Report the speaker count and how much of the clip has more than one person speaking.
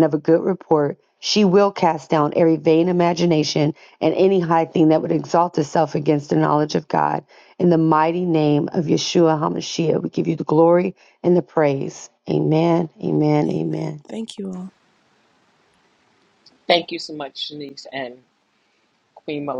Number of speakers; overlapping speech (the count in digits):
3, about 3%